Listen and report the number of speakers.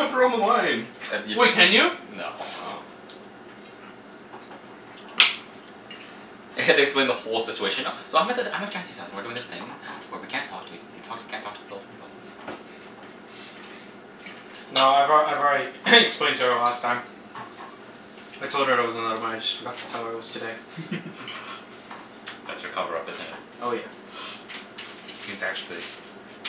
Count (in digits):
3